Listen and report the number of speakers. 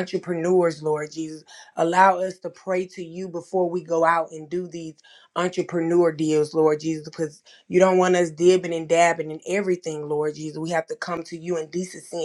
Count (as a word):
one